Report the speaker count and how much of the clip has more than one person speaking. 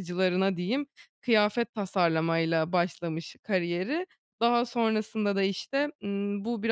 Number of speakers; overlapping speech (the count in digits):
1, no overlap